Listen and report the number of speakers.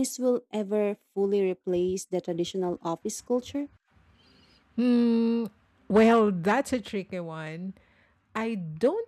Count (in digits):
2